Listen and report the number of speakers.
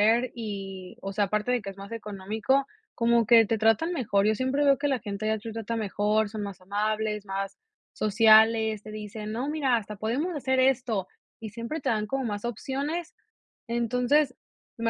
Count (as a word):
one